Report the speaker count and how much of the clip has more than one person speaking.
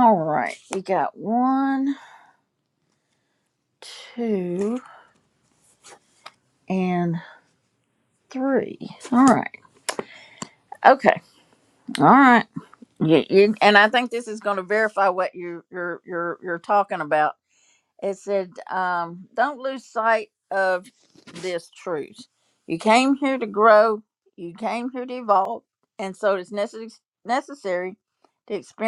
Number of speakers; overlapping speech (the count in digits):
1, no overlap